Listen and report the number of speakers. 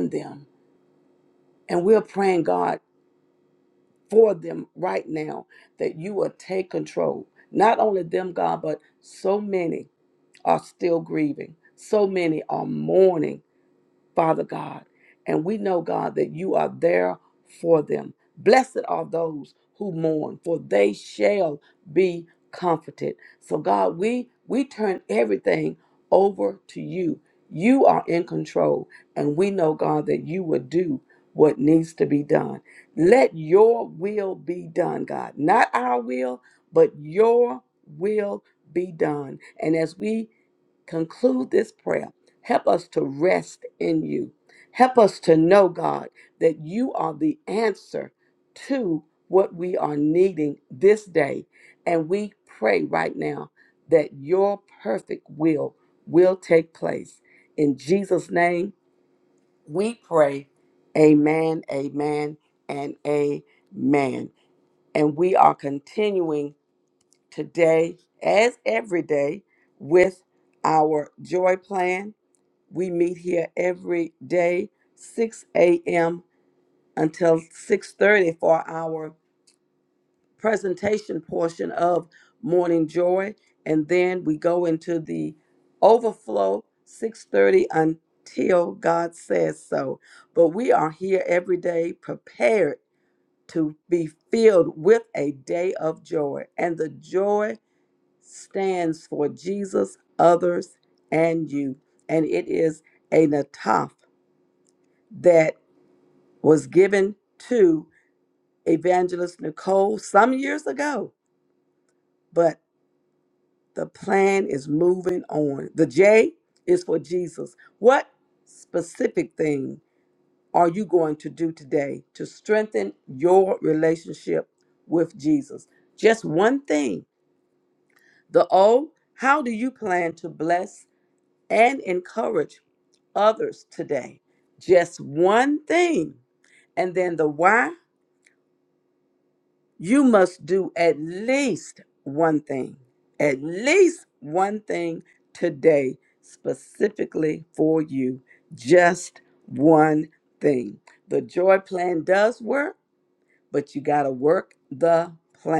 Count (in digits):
1